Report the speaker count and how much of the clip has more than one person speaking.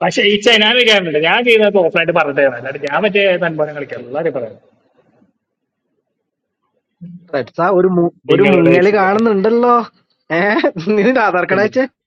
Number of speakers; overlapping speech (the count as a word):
two, about 6%